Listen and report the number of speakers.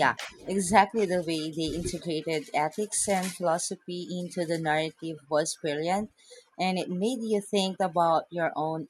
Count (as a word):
one